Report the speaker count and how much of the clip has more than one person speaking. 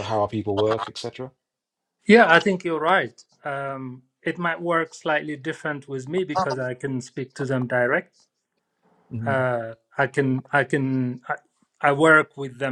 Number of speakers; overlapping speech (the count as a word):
two, about 1%